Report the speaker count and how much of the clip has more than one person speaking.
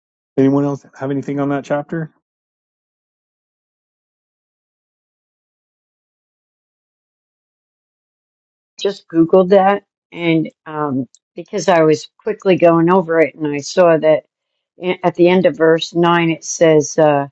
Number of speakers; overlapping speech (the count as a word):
two, no overlap